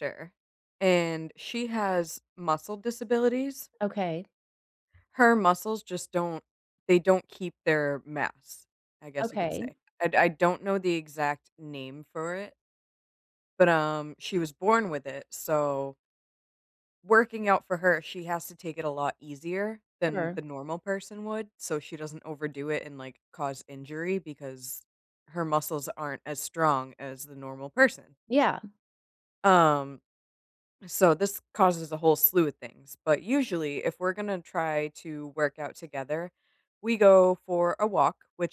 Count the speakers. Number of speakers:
2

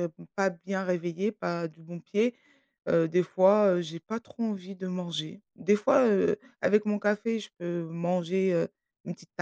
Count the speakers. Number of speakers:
1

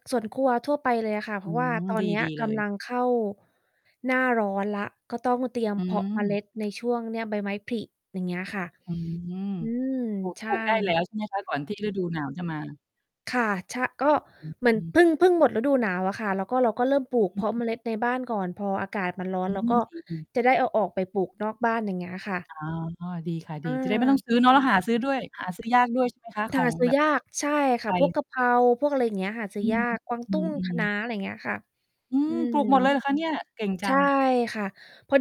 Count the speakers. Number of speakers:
2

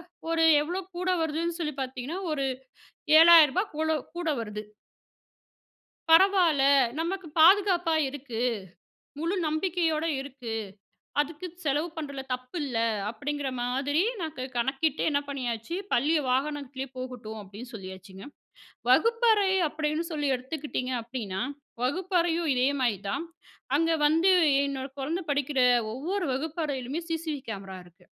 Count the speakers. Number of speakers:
1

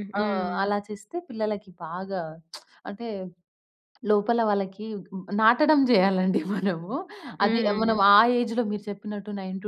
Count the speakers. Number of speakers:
2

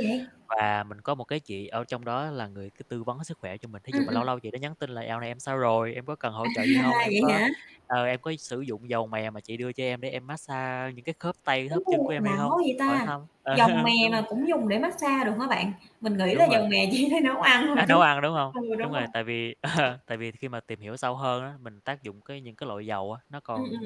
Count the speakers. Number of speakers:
2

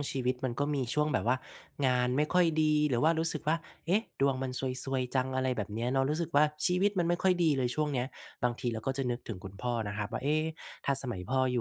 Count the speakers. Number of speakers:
1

